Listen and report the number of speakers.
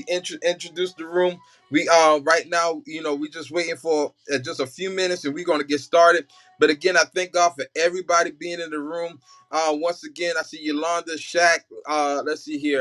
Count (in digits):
1